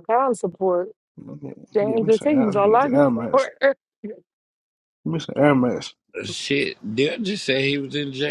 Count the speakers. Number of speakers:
3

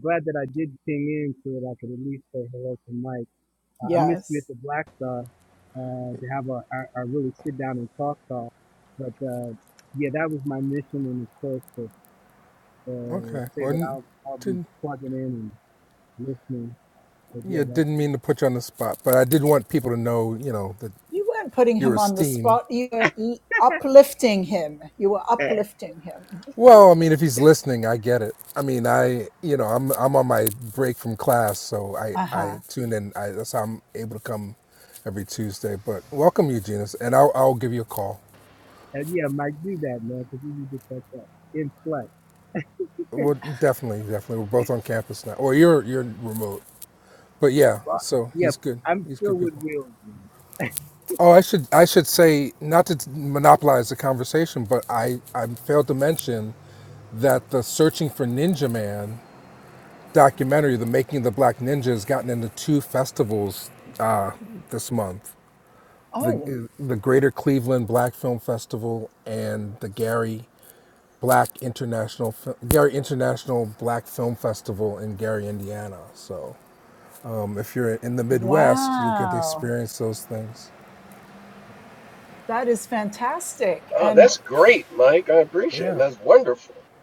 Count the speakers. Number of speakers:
4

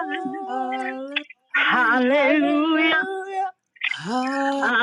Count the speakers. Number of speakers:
3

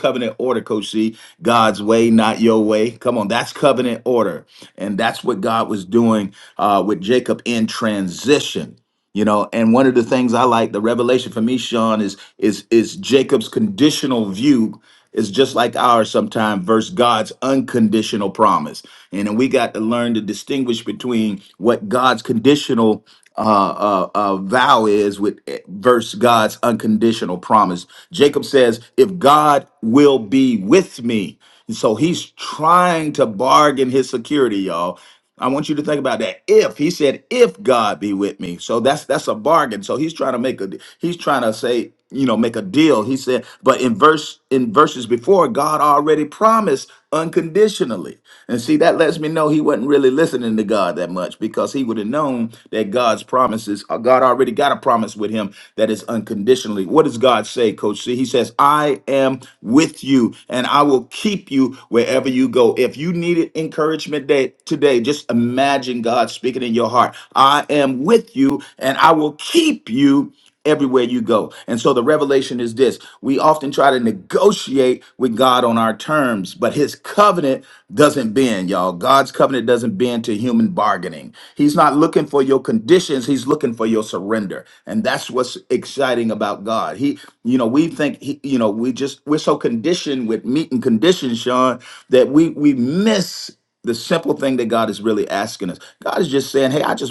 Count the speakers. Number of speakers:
1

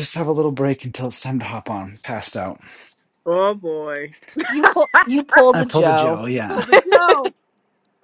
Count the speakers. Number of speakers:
3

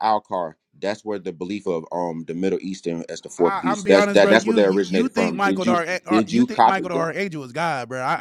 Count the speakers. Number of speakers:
2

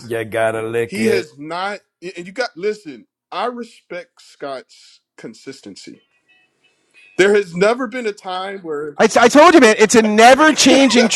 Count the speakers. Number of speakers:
3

